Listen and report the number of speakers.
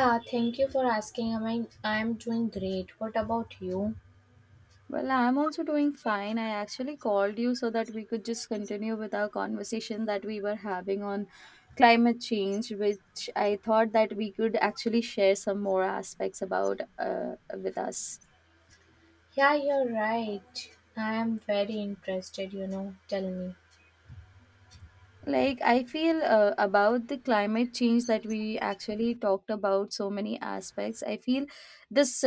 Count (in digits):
2